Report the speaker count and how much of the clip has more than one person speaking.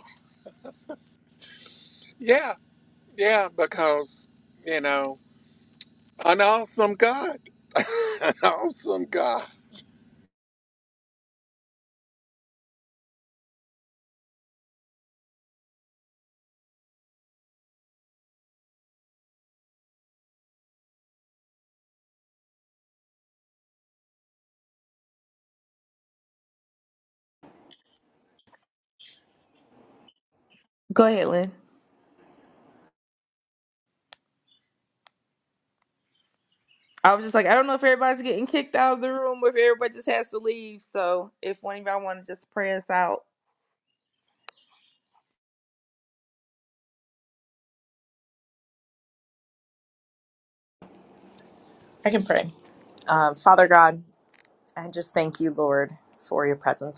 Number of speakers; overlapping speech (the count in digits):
3, no overlap